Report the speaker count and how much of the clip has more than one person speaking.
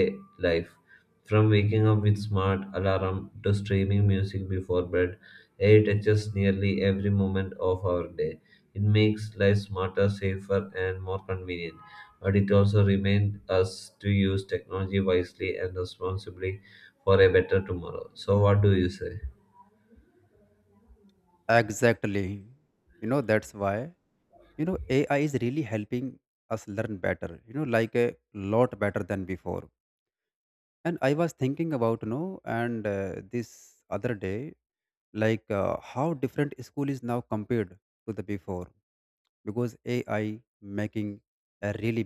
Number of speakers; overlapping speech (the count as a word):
two, no overlap